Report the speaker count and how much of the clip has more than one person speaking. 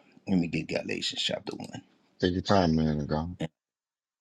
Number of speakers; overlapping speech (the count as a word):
two, no overlap